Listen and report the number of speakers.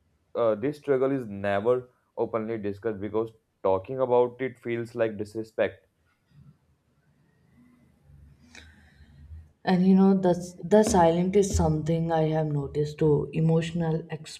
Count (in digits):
2